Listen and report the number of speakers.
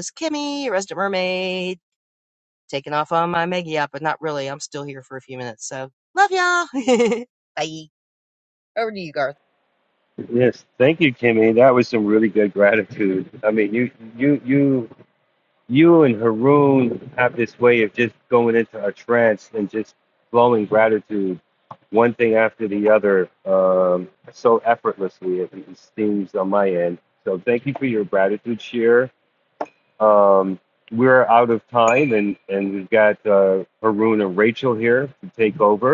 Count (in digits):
2